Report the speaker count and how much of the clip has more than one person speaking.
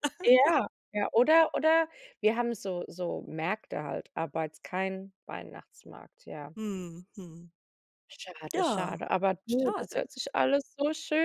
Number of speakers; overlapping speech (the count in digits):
2, about 7%